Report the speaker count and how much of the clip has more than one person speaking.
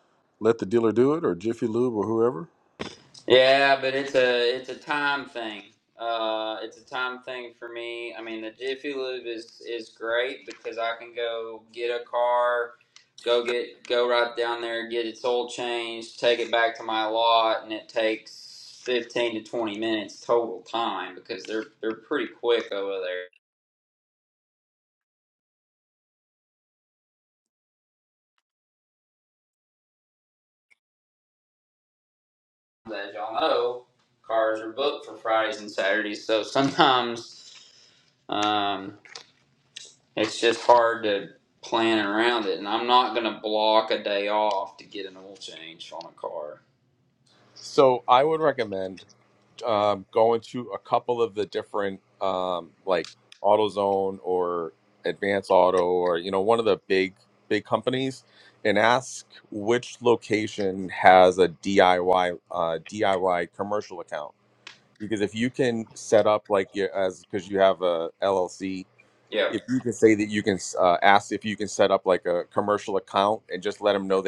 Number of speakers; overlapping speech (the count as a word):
three, under 1%